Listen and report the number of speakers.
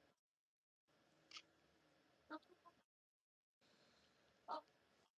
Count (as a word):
zero